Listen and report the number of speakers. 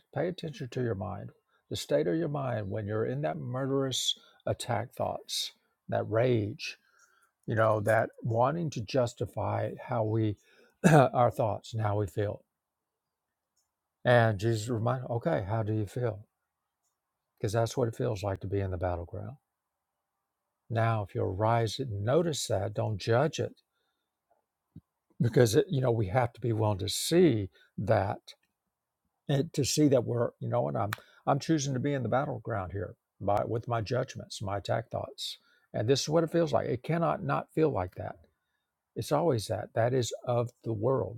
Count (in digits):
1